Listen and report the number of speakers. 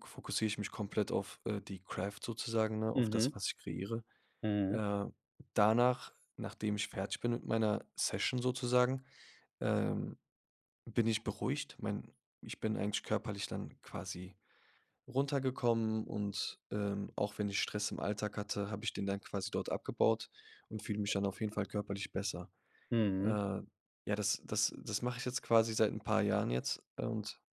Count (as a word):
two